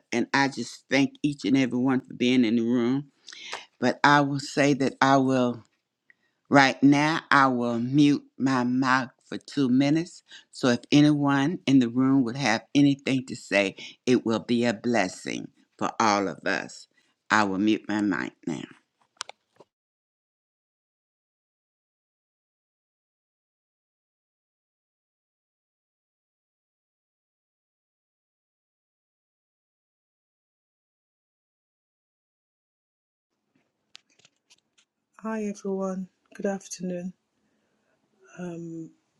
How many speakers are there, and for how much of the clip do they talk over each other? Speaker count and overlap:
2, no overlap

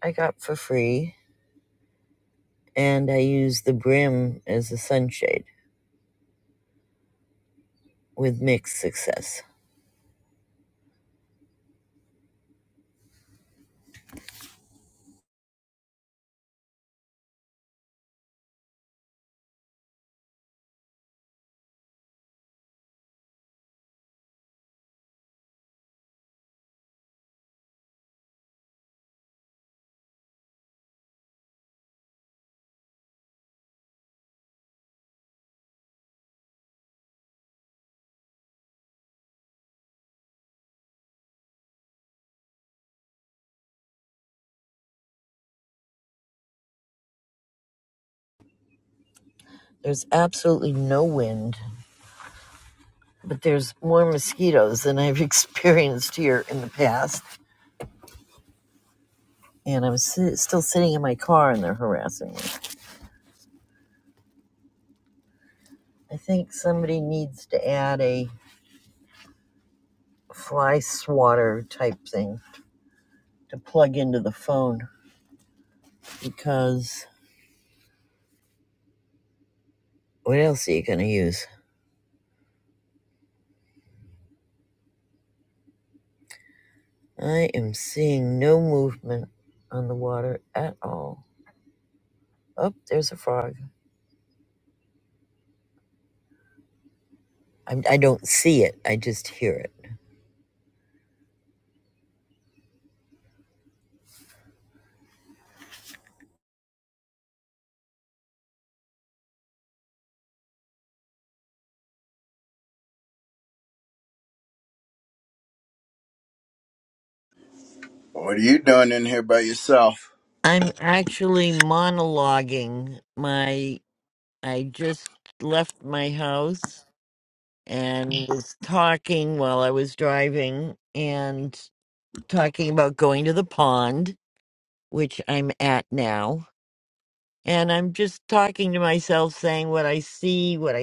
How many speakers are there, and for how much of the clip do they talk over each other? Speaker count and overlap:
2, no overlap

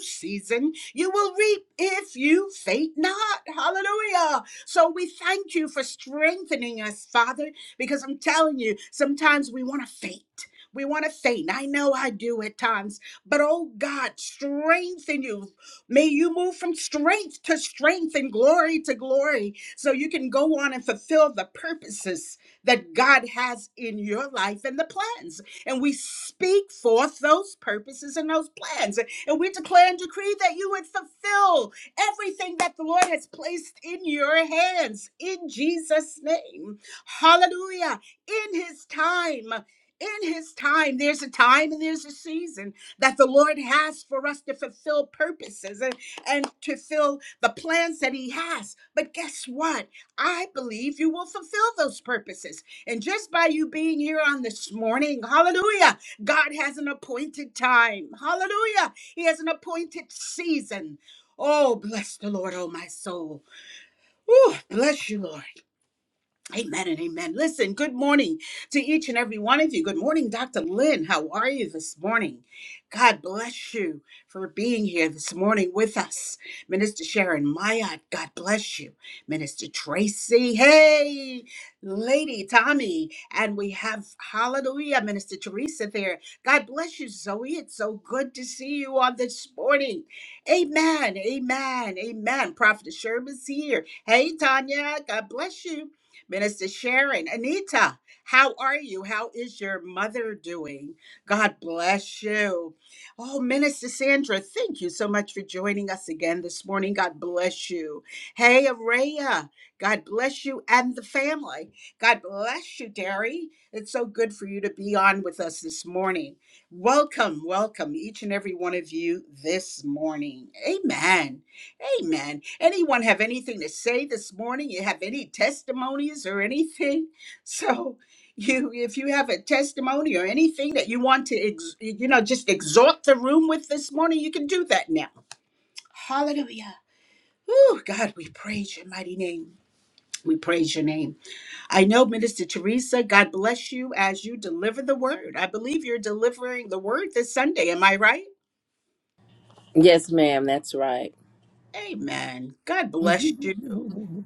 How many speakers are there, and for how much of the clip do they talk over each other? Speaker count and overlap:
2, under 1%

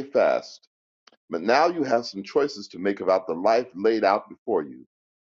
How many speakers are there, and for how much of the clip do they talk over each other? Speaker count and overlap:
1, no overlap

